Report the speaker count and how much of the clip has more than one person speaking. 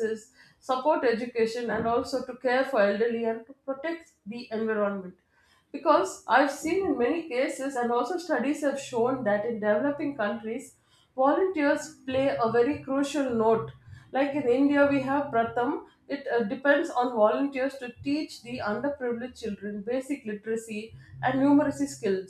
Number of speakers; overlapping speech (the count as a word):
one, no overlap